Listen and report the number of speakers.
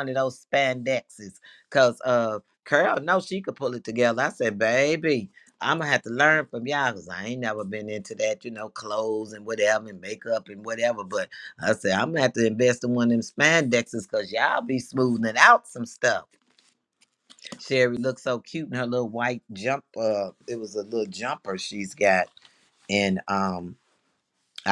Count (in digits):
1